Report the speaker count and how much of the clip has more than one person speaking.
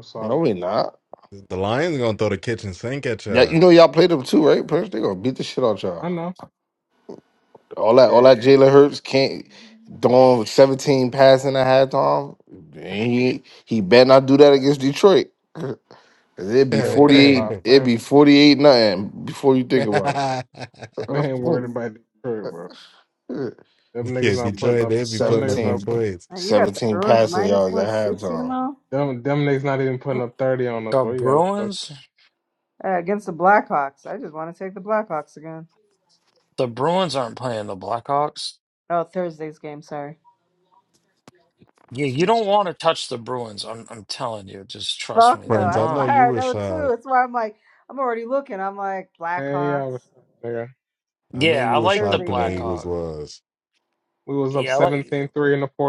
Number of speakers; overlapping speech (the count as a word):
five, about 19%